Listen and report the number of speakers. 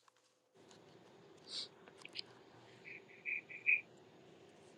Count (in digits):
0